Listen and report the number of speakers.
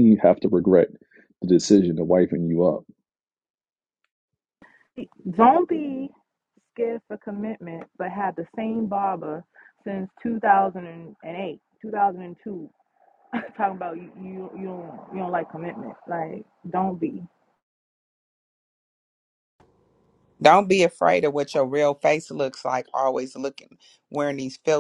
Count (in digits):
3